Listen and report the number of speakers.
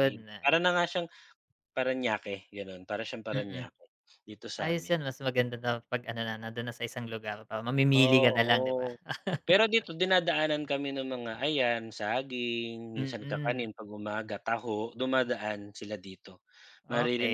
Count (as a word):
two